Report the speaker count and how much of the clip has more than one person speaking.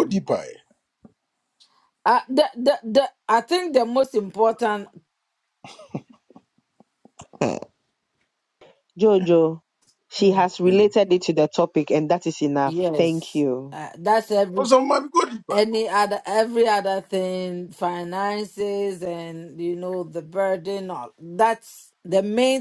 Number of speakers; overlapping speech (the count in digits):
3, about 6%